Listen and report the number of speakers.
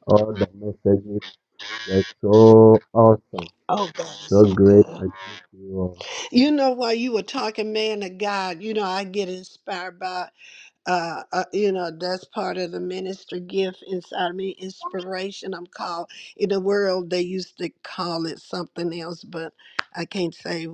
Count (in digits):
2